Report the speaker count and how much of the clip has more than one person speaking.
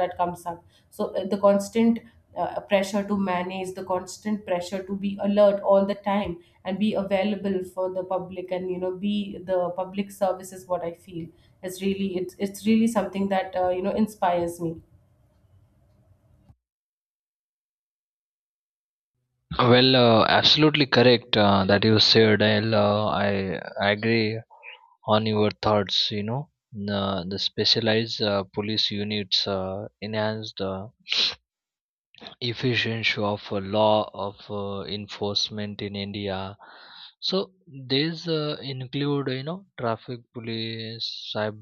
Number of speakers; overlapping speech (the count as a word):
two, no overlap